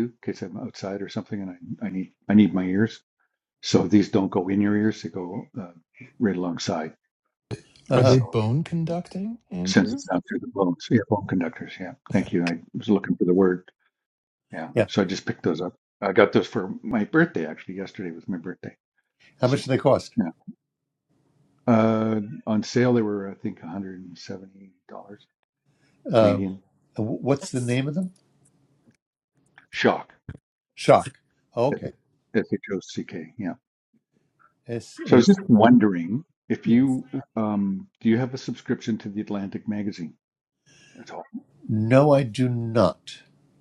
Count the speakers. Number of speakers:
three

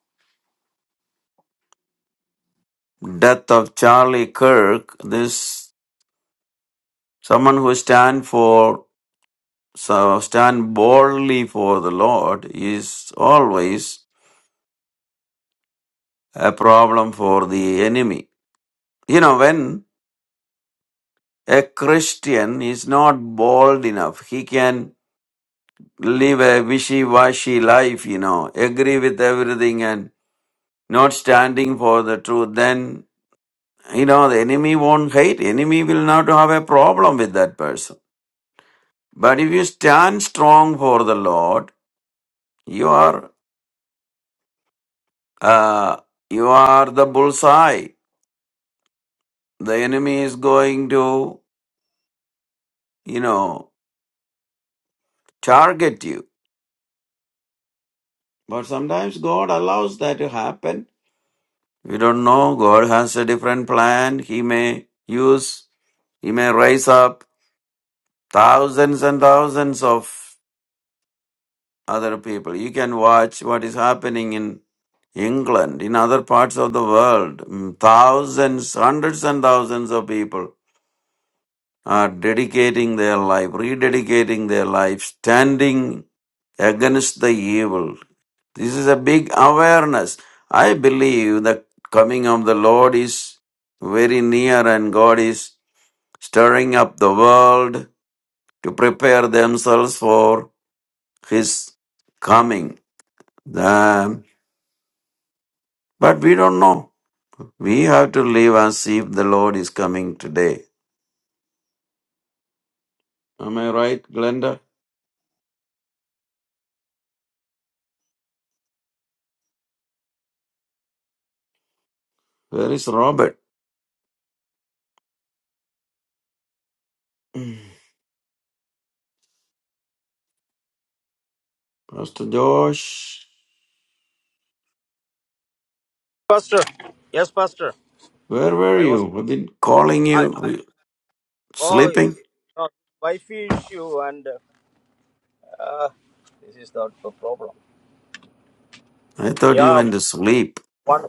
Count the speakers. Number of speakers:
two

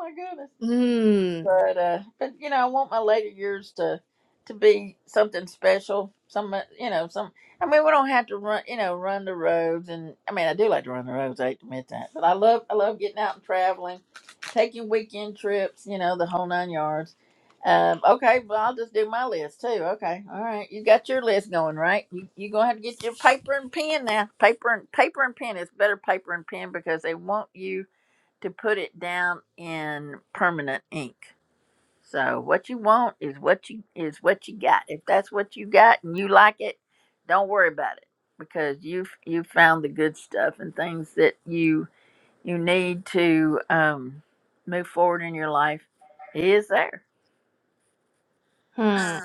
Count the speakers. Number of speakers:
two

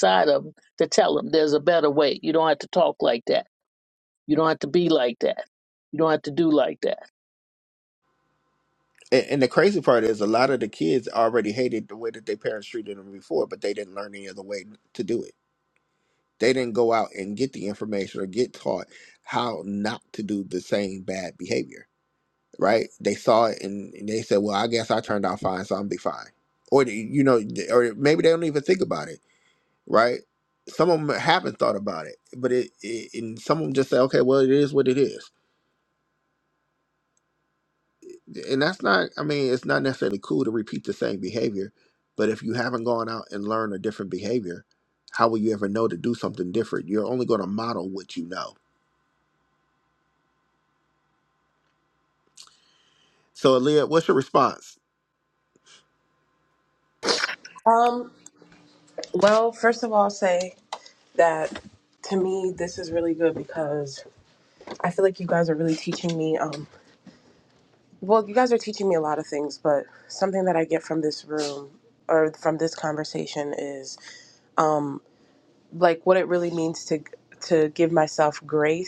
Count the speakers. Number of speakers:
three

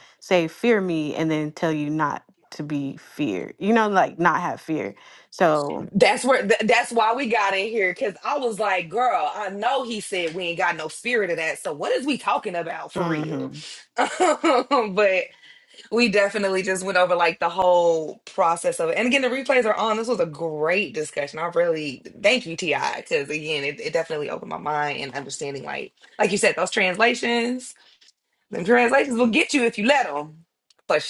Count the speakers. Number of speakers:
two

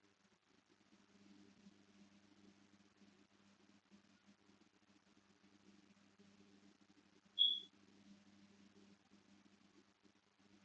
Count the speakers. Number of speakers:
zero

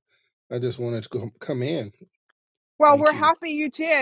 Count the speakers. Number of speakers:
two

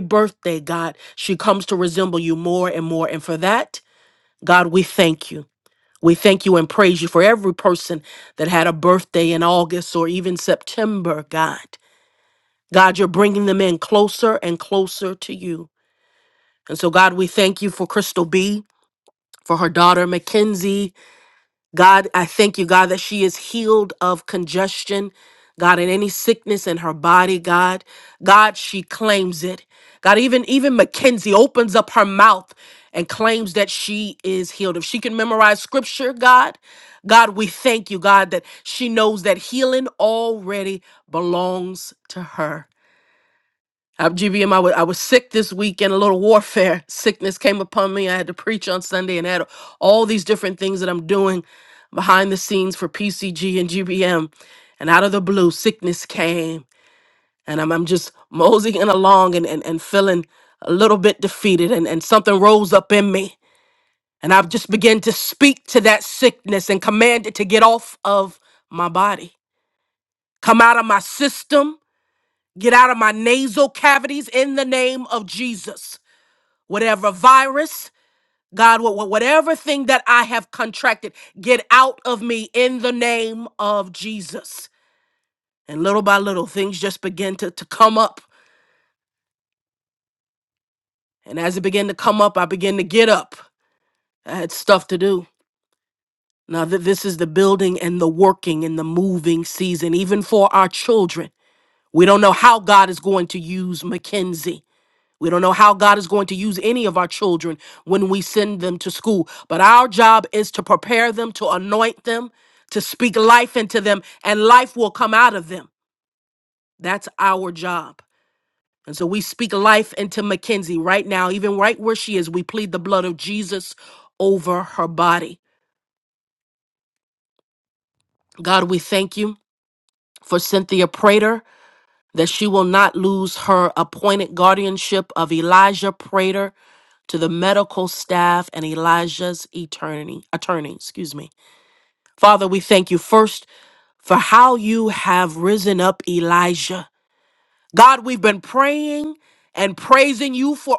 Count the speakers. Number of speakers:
one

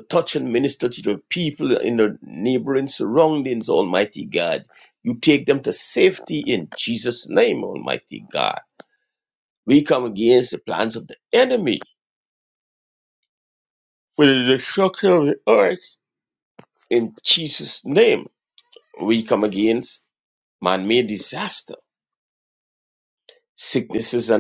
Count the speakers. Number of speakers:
one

